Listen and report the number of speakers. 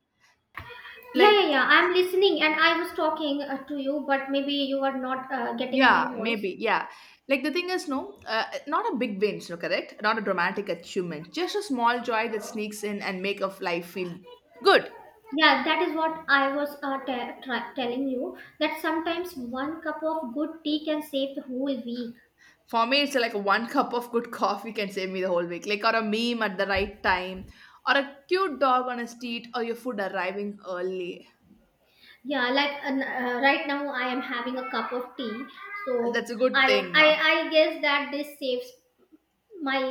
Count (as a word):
two